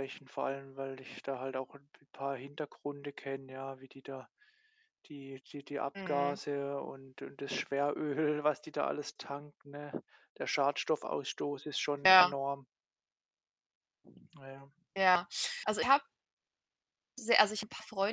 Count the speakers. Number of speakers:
2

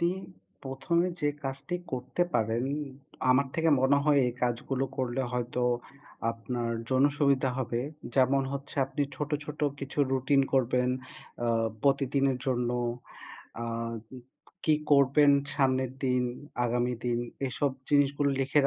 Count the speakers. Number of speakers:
1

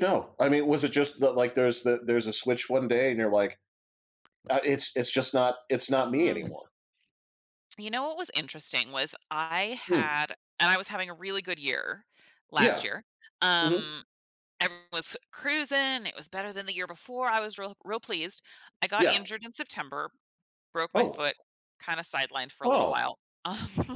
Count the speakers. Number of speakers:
2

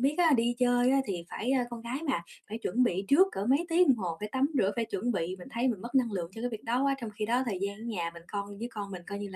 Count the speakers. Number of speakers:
1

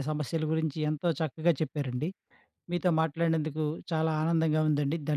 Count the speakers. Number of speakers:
1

